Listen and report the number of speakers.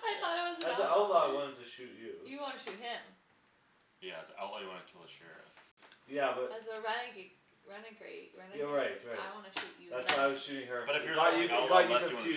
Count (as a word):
three